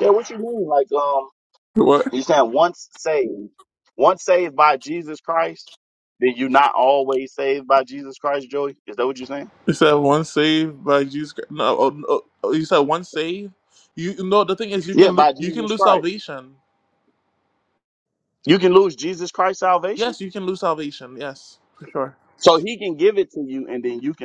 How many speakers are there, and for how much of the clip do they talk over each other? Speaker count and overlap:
2, about 5%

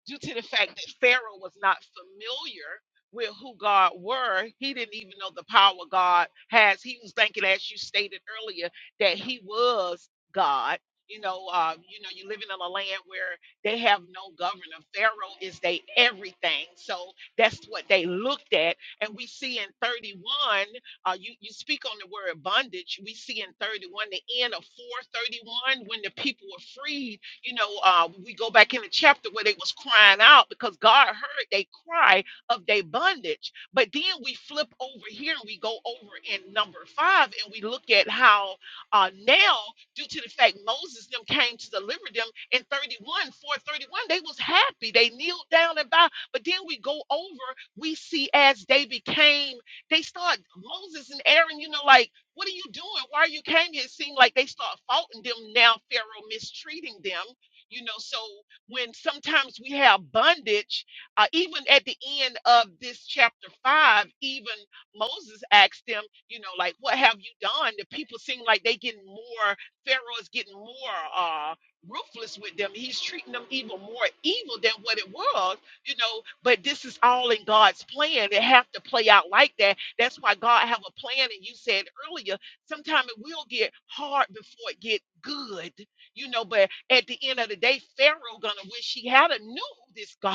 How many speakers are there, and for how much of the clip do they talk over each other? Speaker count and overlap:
1, no overlap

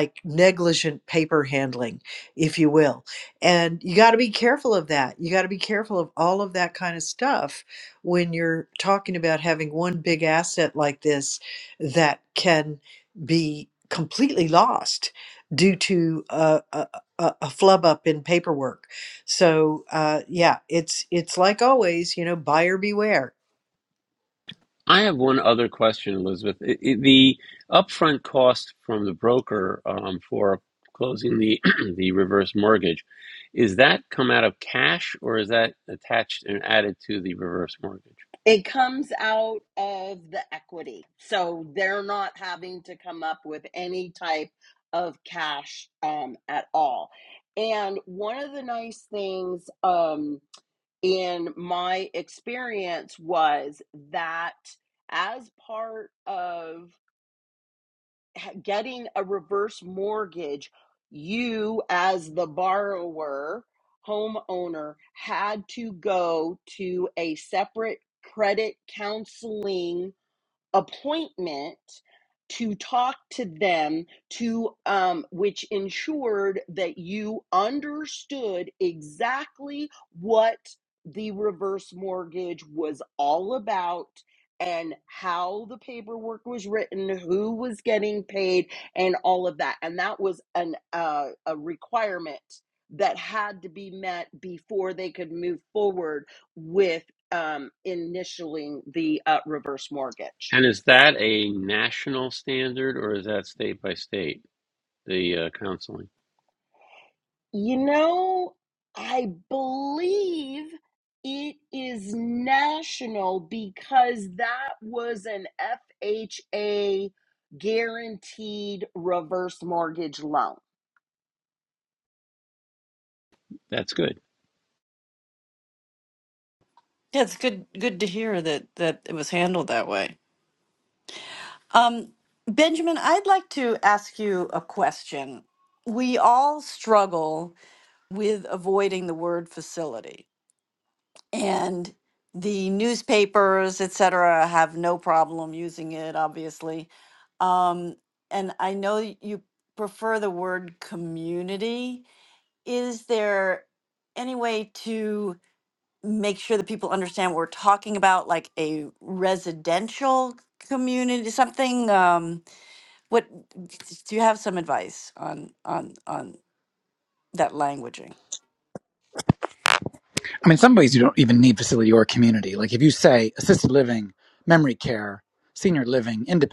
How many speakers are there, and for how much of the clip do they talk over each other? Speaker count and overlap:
5, under 1%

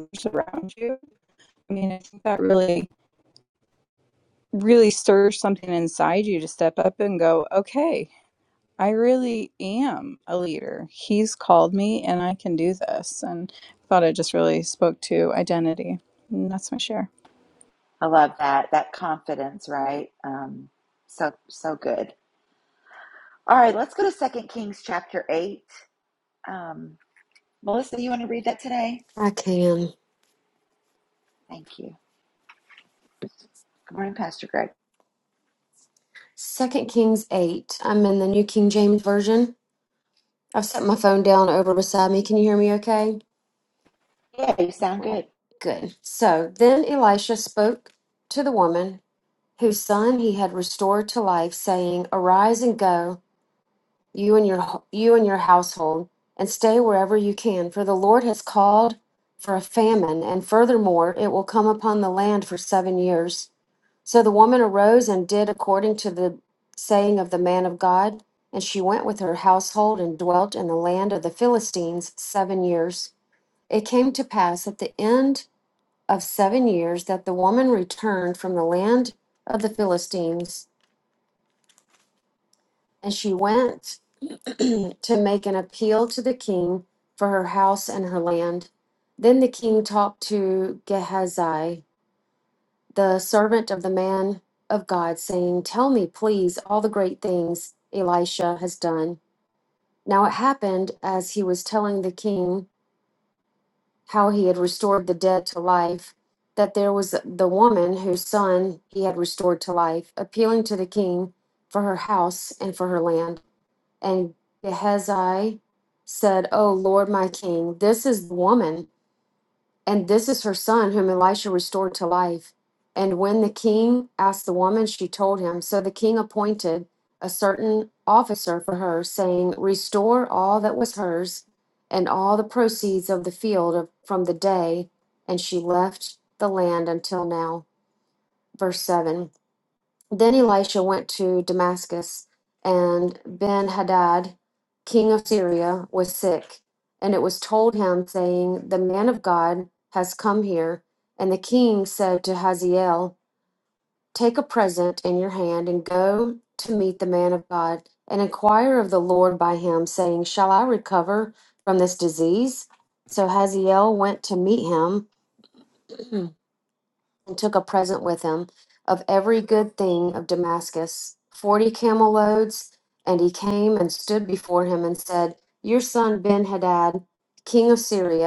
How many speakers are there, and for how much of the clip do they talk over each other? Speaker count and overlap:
3, under 1%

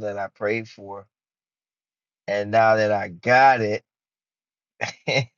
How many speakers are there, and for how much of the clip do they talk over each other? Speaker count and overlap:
1, no overlap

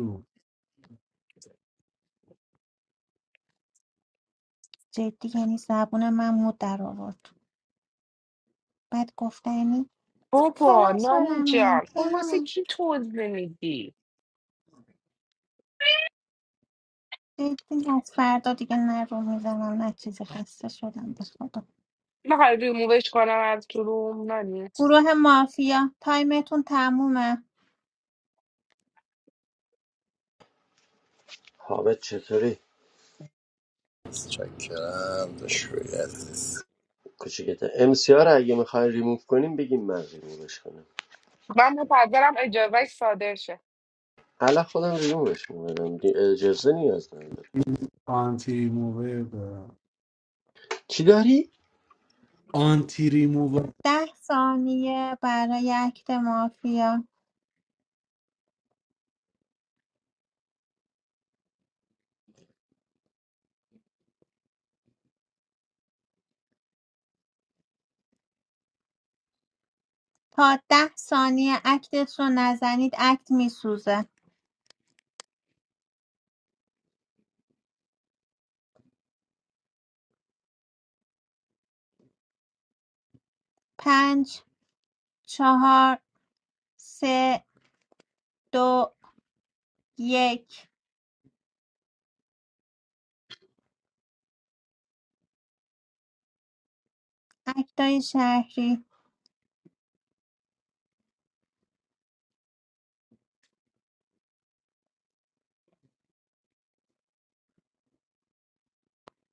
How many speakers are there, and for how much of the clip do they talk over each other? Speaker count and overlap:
5, about 2%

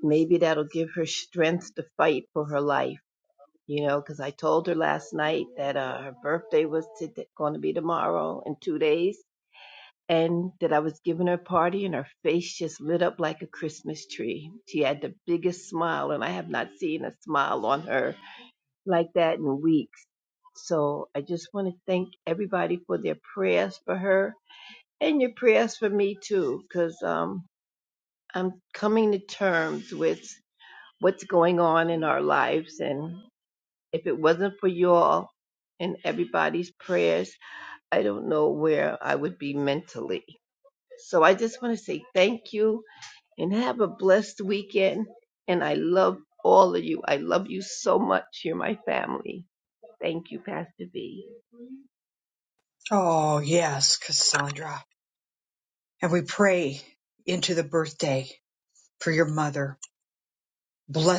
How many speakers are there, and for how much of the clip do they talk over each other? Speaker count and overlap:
2, no overlap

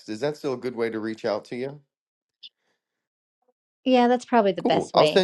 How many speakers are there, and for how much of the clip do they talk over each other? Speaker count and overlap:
2, about 11%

